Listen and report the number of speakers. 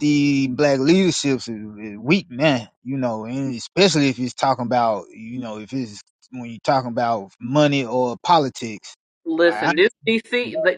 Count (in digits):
2